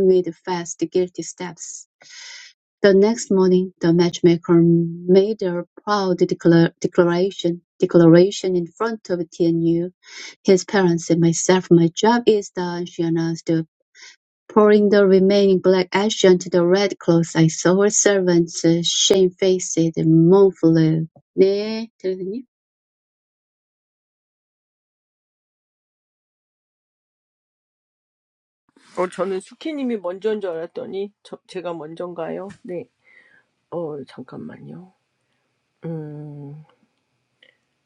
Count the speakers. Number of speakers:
two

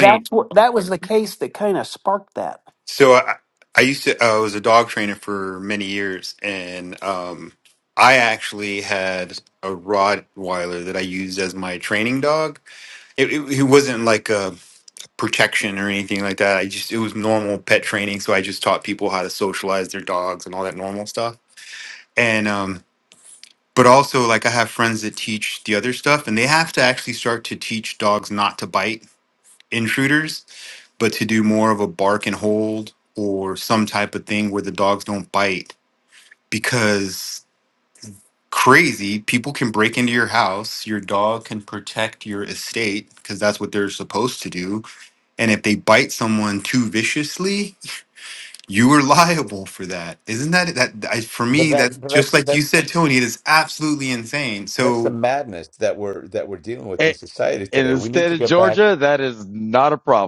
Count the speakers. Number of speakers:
four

